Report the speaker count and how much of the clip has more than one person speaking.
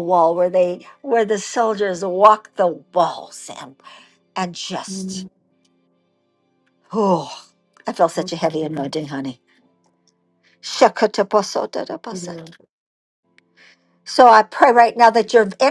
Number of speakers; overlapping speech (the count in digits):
2, about 5%